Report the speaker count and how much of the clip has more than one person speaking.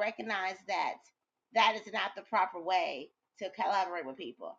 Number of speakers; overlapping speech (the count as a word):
one, no overlap